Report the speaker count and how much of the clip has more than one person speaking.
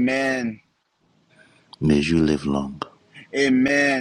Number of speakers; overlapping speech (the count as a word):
two, no overlap